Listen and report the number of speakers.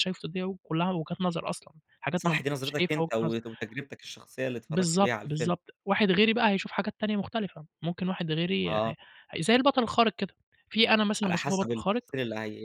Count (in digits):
2